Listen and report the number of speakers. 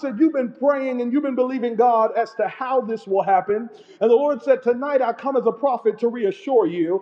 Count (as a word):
one